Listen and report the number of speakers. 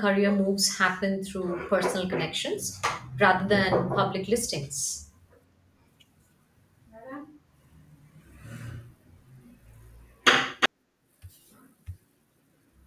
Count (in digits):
1